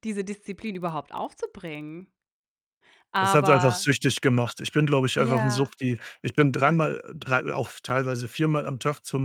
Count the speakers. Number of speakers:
2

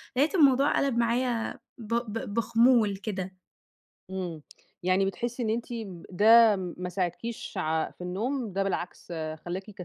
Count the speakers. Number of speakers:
2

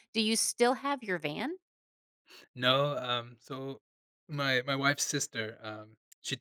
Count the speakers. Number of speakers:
2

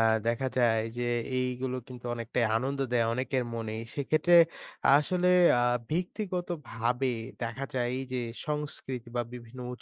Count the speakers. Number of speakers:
1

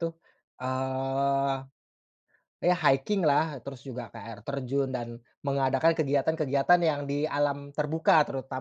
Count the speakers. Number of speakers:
1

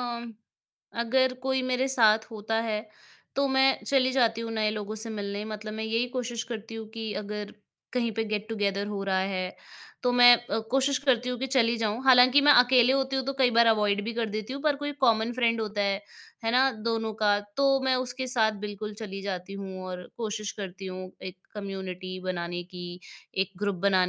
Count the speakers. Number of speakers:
1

